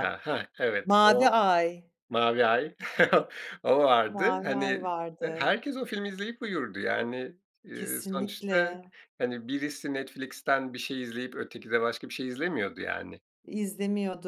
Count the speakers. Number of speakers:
2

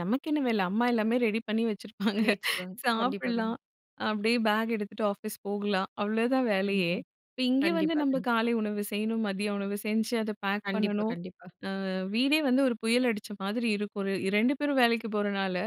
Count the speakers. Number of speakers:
2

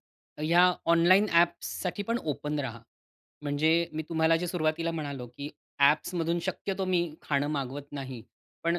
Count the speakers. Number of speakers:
1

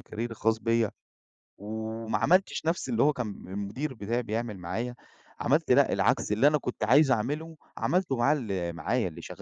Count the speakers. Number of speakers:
1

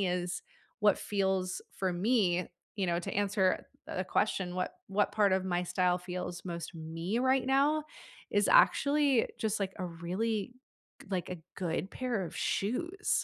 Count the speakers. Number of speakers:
1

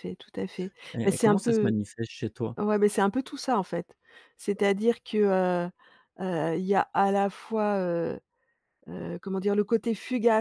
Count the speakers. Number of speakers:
2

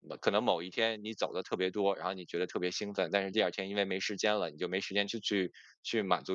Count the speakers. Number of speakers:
1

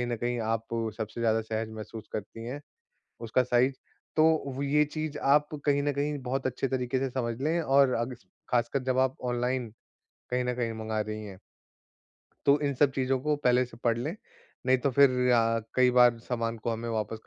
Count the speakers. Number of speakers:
1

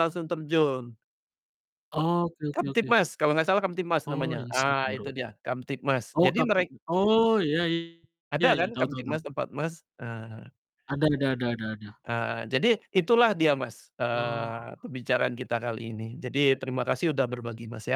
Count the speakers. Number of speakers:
2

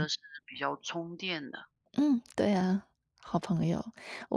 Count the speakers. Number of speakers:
2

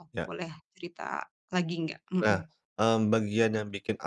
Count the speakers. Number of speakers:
2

